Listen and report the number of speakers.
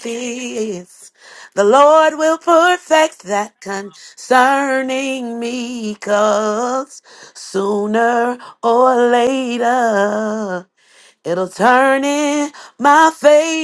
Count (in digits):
1